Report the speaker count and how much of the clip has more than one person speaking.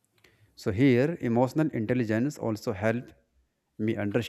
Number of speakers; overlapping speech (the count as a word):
one, no overlap